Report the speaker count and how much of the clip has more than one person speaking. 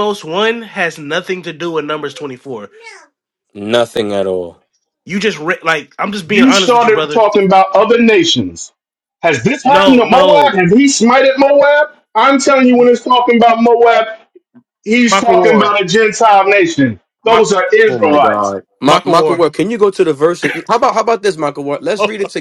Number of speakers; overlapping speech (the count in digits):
3, about 17%